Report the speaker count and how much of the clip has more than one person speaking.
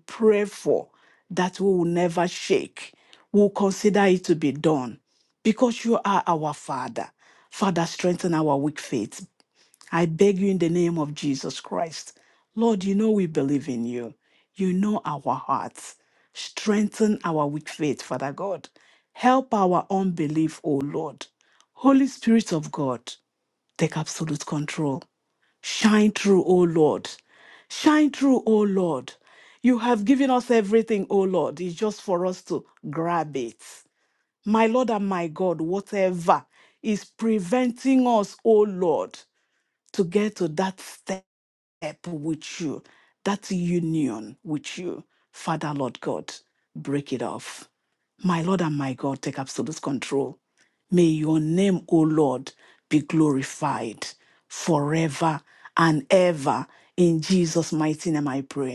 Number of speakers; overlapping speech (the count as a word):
one, no overlap